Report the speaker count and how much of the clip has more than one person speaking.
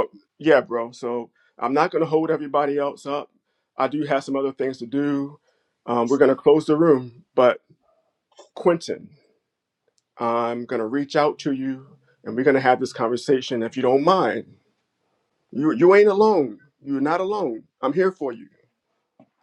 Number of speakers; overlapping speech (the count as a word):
one, no overlap